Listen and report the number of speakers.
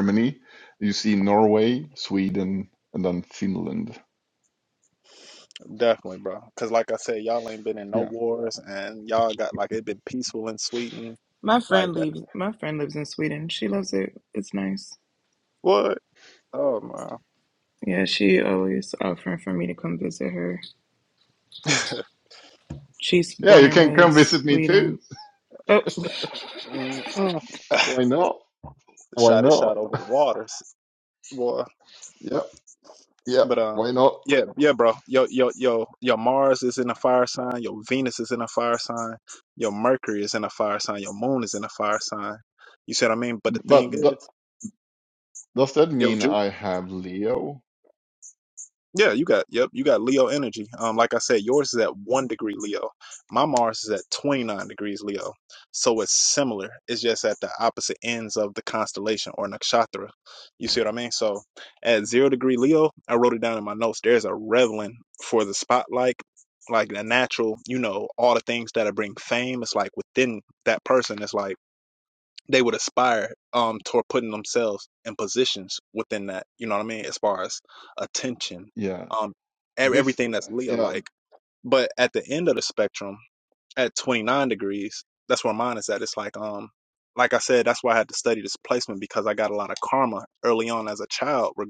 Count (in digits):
3